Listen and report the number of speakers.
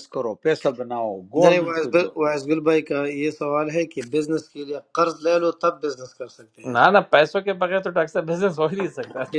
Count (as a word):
three